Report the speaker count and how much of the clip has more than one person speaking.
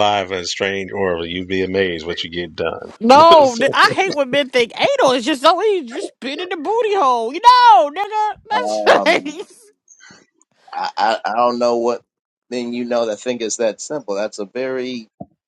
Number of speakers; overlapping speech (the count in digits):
3, about 5%